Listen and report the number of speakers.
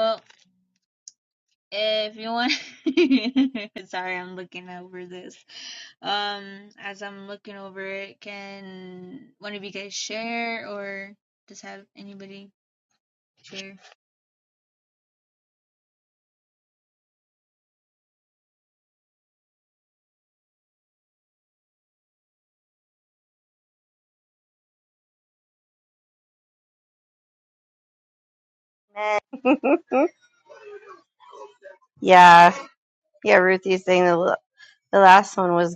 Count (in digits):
2